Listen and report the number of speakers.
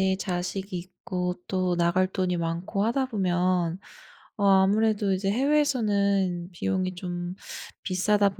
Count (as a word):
one